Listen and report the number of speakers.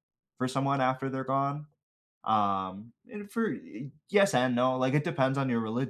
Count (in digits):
1